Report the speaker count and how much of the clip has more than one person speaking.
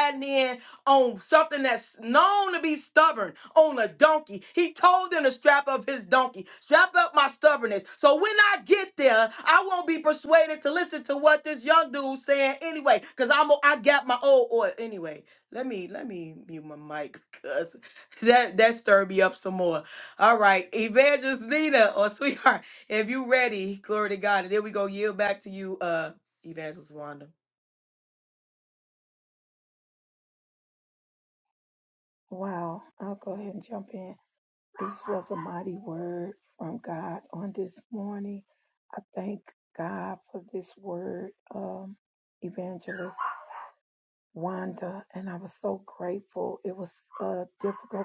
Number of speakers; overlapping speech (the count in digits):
2, no overlap